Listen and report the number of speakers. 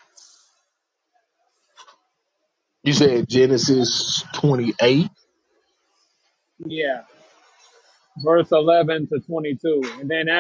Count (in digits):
2